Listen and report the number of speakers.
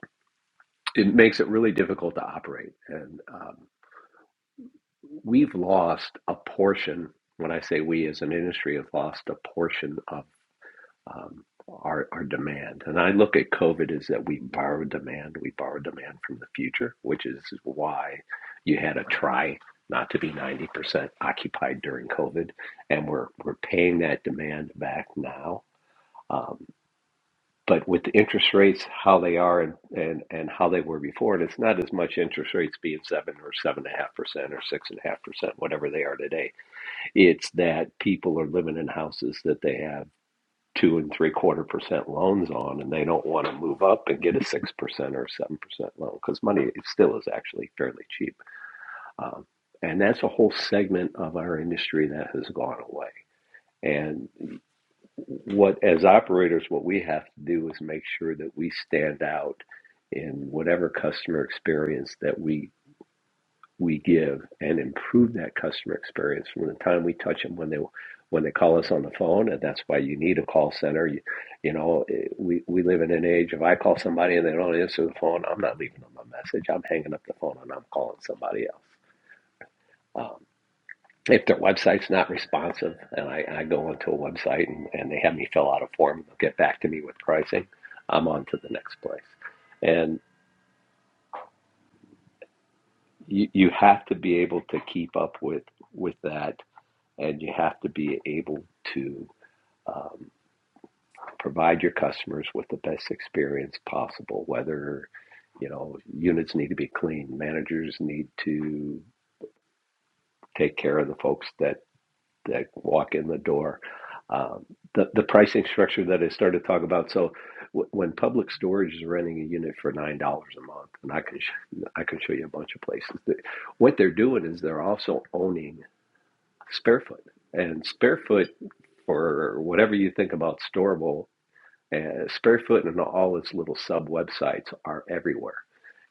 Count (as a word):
one